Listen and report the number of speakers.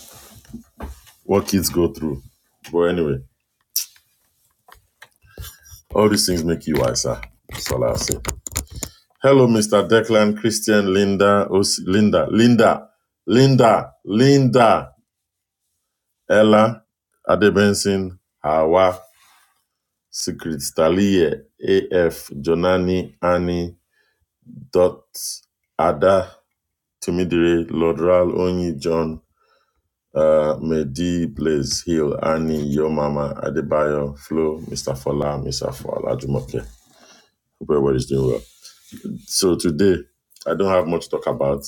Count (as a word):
one